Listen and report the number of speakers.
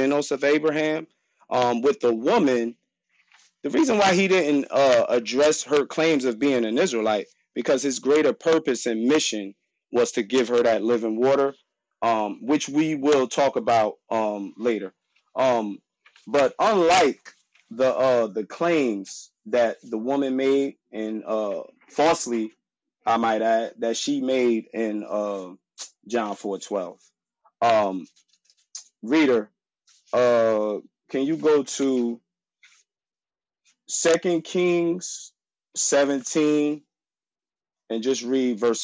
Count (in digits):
1